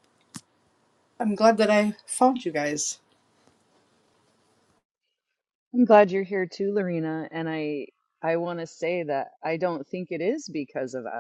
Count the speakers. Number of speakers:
two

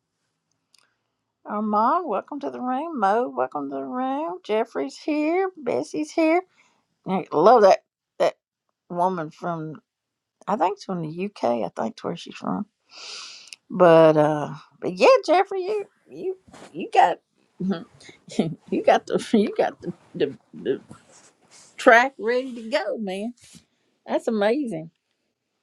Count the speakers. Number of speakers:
one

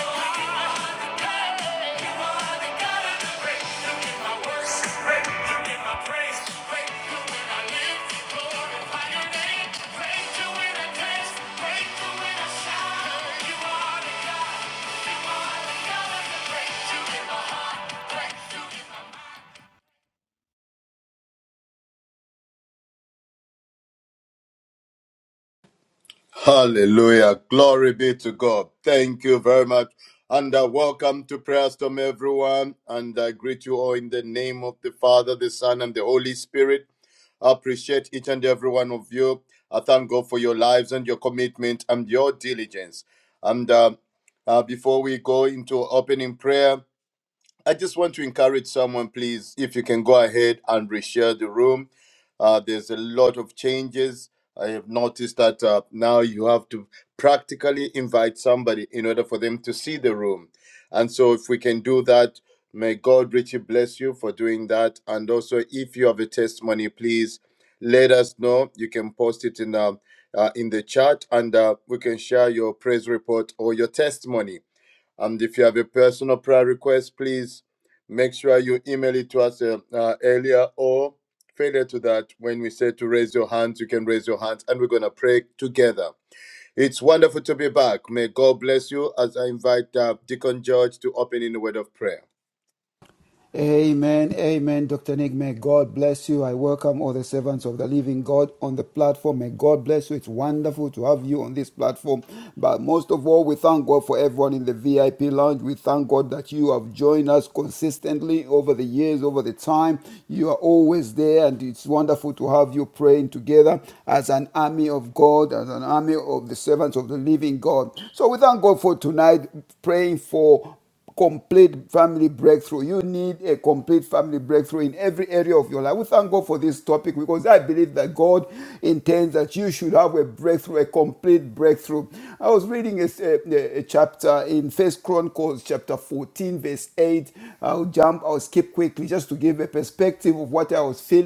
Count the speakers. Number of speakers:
three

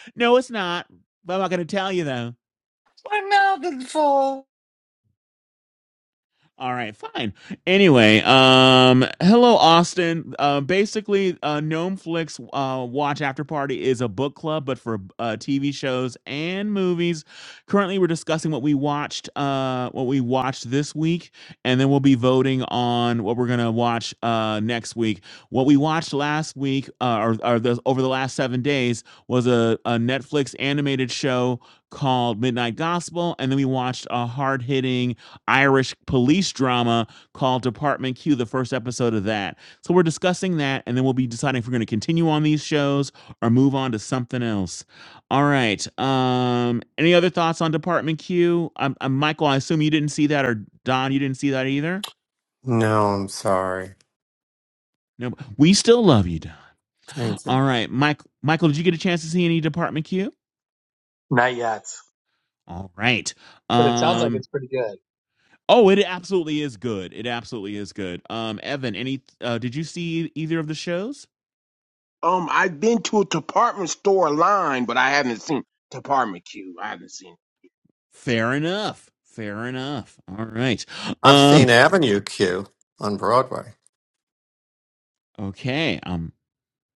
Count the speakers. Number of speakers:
five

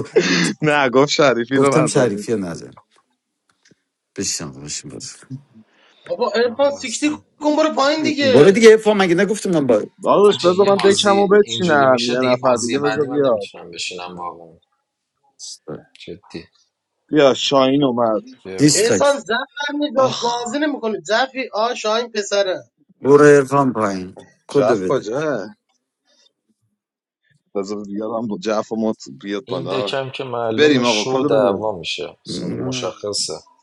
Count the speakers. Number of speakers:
four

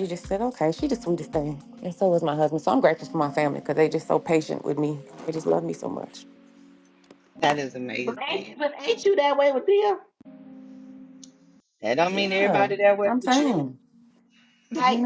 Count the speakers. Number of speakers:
three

